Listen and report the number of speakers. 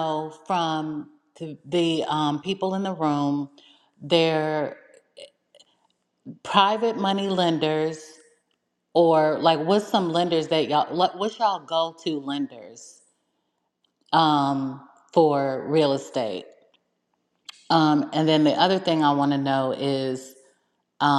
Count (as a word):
one